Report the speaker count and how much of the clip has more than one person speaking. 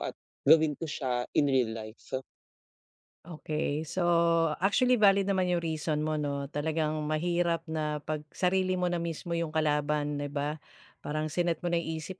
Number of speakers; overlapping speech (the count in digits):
2, no overlap